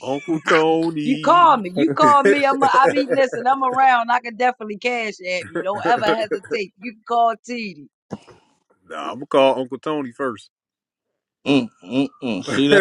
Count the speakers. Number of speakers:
3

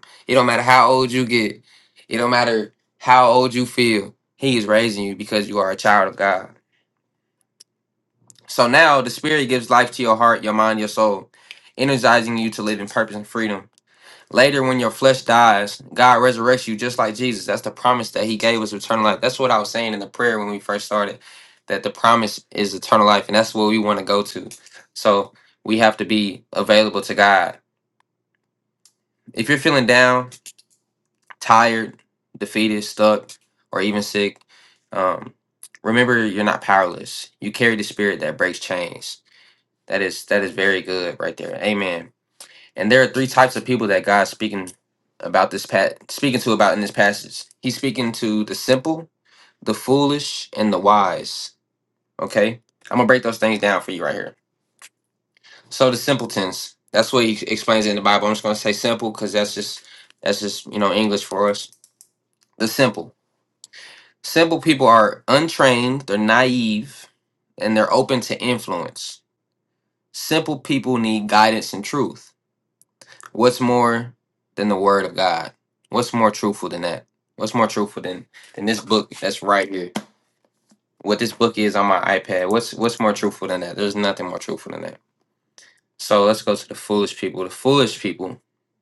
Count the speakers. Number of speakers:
1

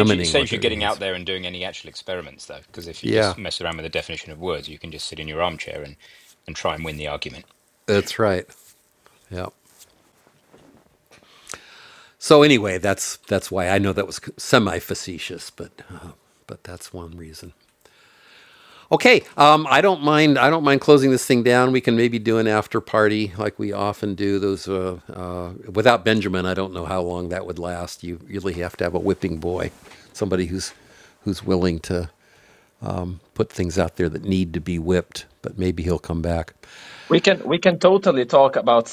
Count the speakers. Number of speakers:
3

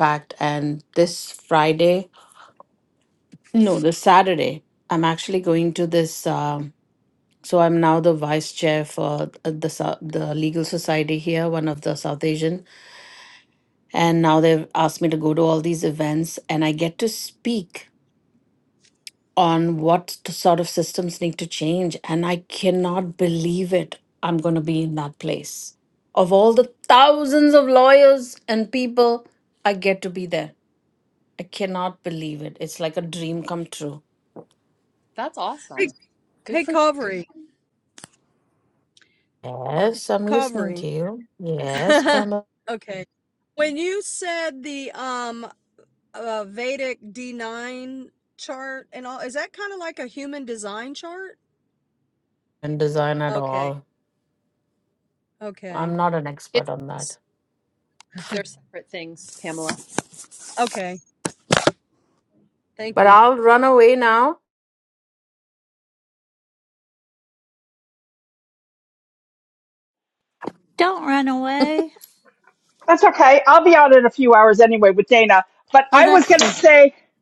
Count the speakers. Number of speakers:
5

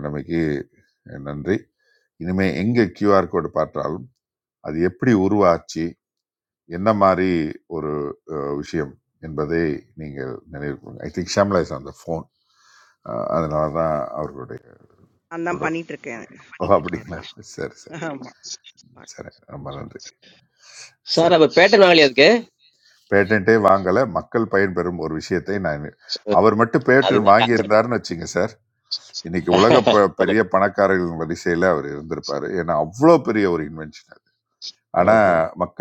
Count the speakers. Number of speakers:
3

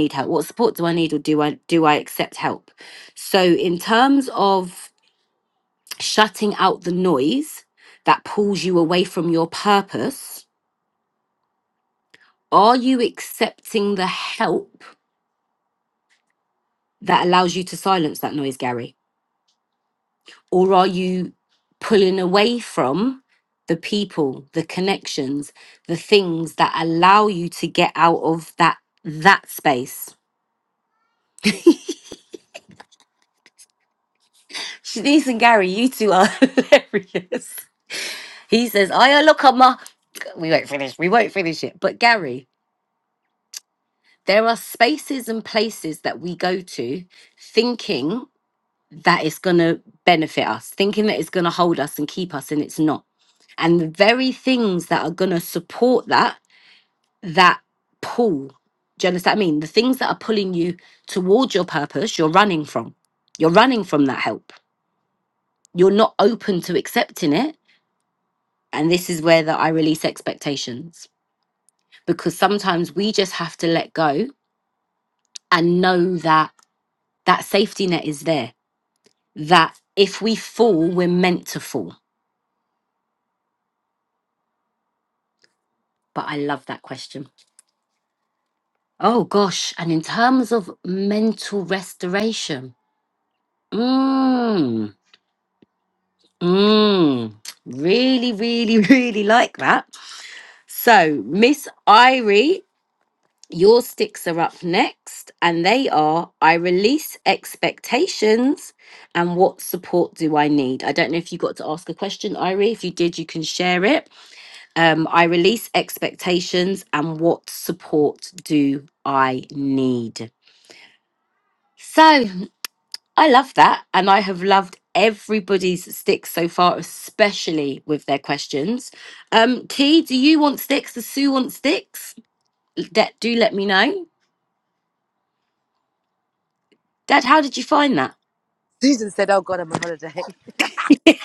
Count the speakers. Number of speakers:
2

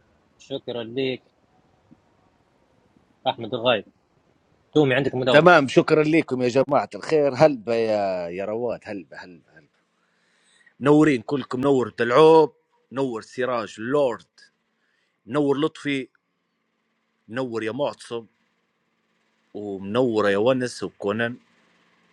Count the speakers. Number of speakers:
2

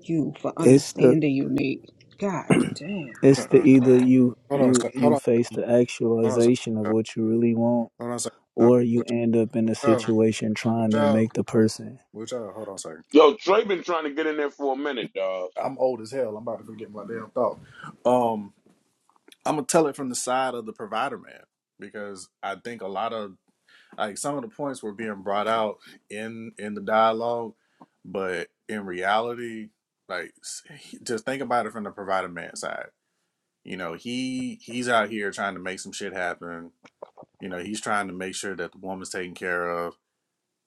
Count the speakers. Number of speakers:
4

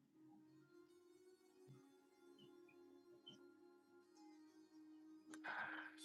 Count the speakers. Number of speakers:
0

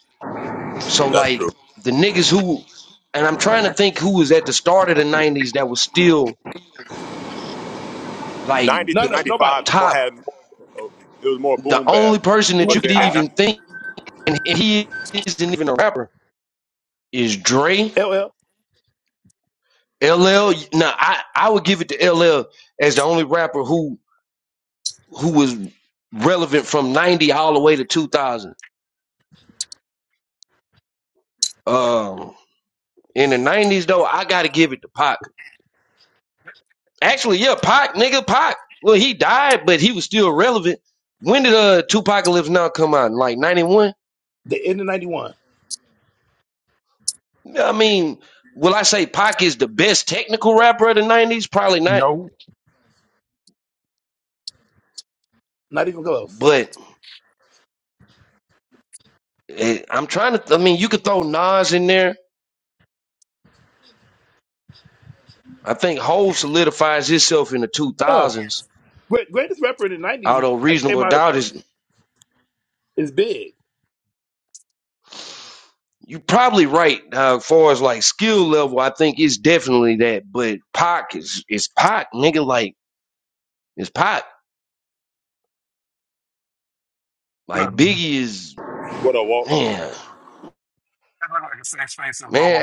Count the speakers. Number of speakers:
4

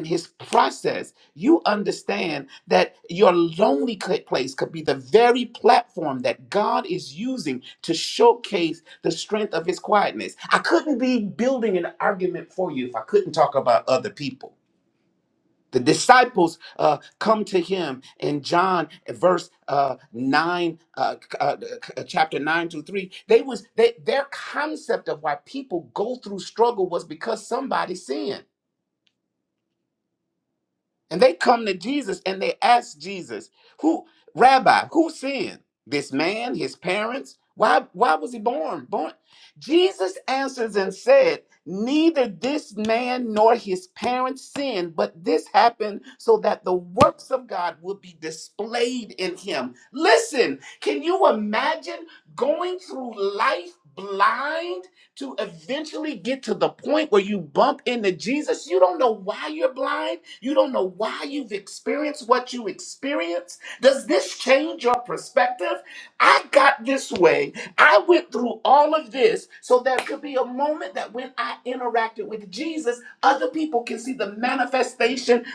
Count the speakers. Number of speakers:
1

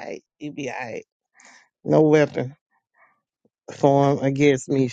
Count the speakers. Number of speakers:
1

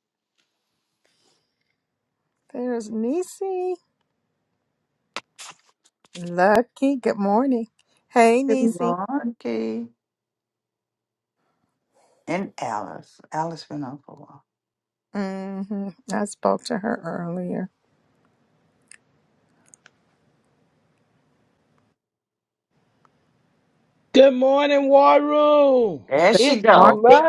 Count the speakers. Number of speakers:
3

